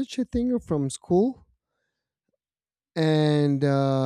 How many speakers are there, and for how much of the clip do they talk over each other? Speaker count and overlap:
one, no overlap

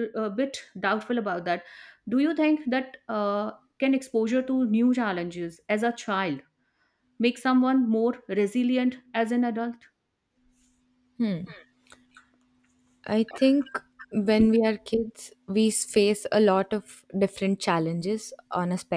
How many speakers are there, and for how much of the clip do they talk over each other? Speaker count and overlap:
two, no overlap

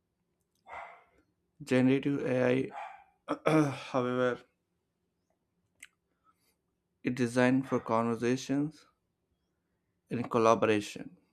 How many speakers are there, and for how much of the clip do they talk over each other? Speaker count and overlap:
one, no overlap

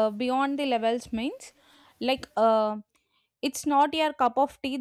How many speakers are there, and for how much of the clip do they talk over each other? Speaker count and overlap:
one, no overlap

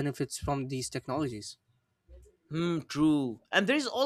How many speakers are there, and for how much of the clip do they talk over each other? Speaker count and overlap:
two, no overlap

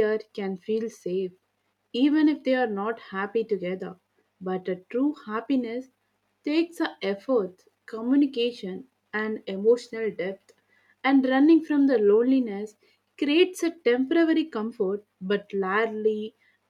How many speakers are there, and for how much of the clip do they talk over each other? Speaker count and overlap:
one, no overlap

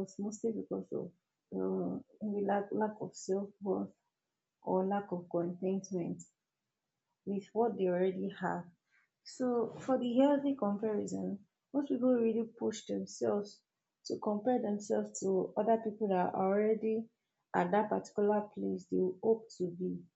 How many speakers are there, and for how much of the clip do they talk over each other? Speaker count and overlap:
one, no overlap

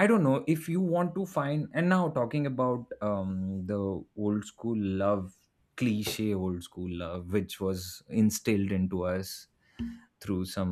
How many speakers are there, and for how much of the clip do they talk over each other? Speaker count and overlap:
one, no overlap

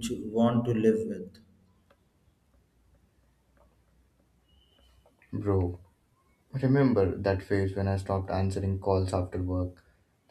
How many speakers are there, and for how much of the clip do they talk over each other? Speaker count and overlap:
two, no overlap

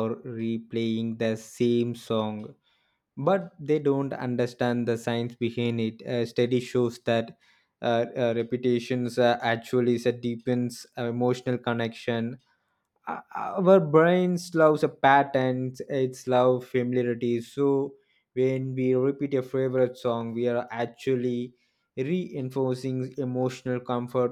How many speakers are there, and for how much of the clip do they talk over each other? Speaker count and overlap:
one, no overlap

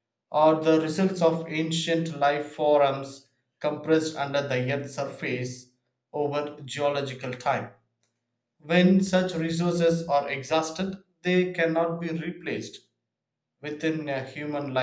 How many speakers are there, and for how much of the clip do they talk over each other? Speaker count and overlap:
one, no overlap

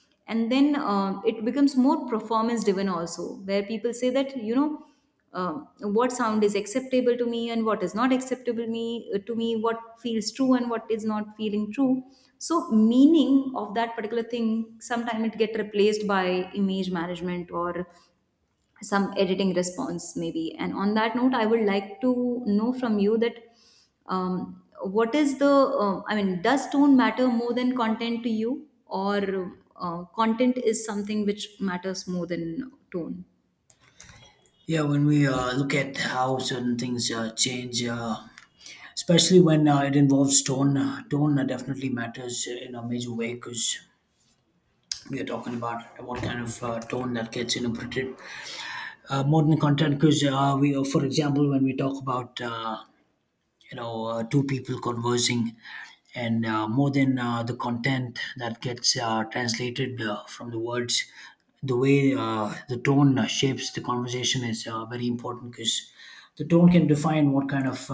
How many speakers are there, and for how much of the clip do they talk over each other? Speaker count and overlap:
two, no overlap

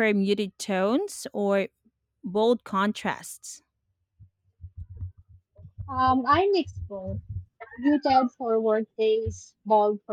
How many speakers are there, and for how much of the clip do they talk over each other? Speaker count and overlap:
two, no overlap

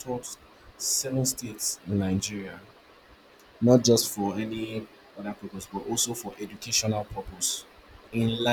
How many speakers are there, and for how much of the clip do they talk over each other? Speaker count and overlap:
one, no overlap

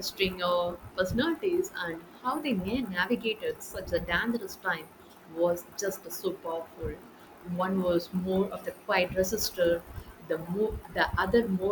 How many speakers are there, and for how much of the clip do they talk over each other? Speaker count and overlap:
one, no overlap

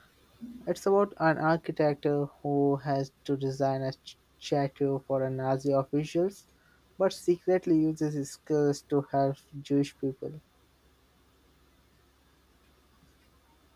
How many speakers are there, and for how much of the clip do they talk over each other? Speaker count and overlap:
one, no overlap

